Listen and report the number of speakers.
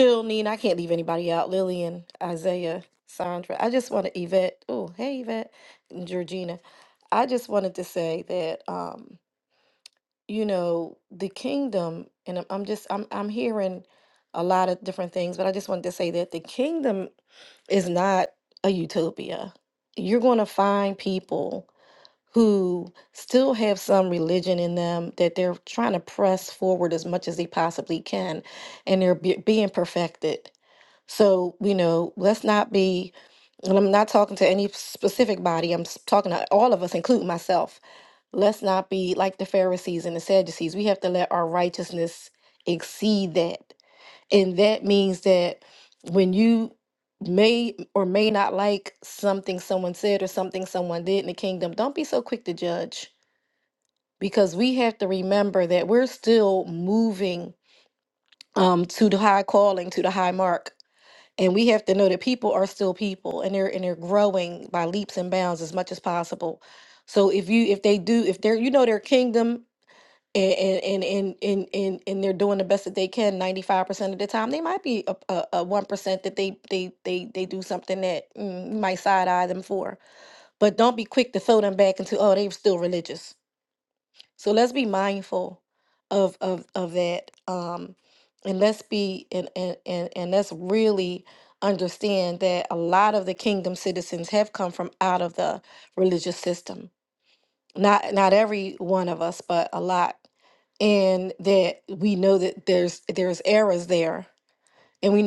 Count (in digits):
1